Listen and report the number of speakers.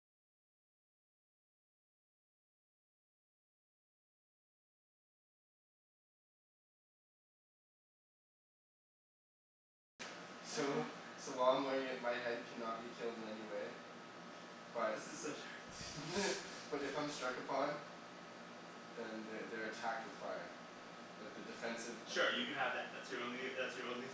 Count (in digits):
2